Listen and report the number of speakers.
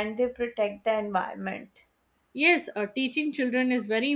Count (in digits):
2